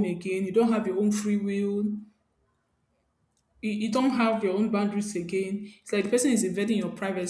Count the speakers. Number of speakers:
1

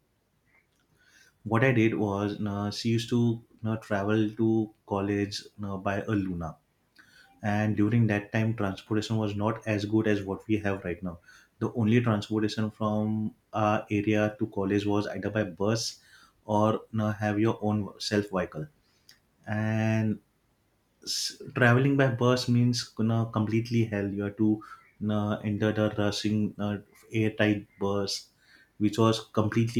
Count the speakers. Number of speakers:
1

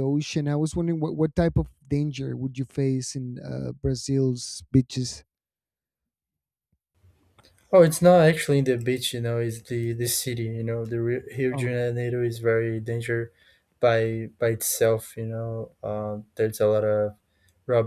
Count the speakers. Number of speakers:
2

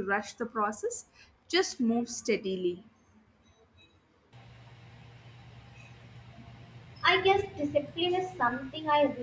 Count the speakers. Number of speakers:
2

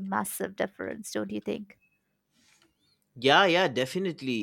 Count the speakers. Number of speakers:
2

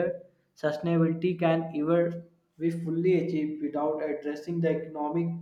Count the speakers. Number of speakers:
1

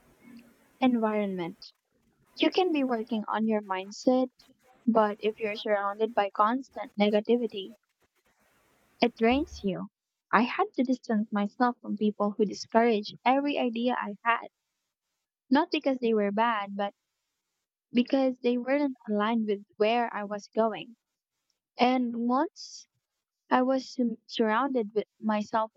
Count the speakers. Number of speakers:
1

